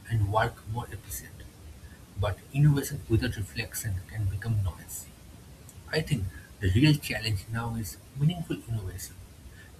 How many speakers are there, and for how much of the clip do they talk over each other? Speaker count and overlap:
1, no overlap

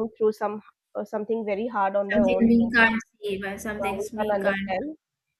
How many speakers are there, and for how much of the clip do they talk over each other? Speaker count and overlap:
2, about 27%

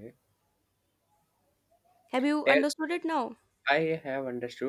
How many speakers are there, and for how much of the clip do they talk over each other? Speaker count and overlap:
2, about 4%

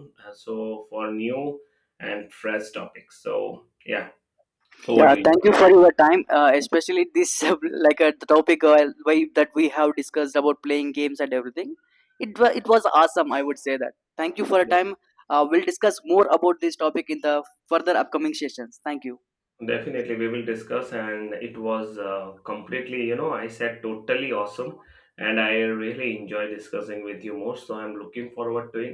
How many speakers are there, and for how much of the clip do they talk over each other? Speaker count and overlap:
2, about 1%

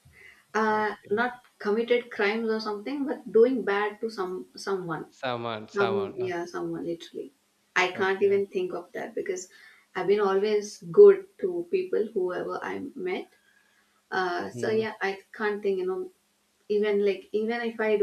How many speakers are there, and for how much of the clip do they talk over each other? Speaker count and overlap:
2, about 9%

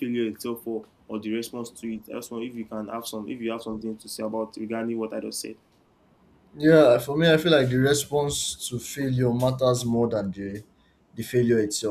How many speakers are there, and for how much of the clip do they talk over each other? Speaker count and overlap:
2, no overlap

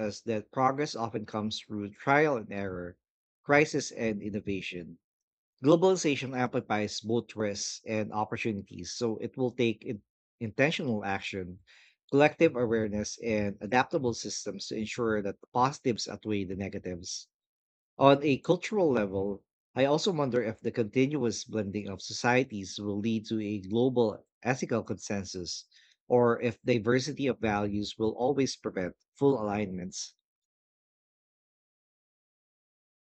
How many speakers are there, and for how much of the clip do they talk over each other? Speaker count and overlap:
1, no overlap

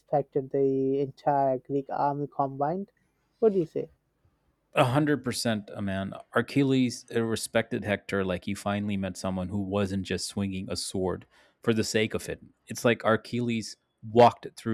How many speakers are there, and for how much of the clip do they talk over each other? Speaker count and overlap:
2, no overlap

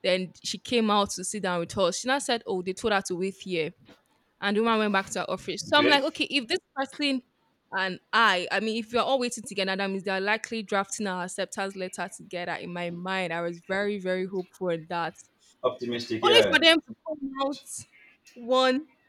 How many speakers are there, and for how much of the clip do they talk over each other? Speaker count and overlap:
2, about 4%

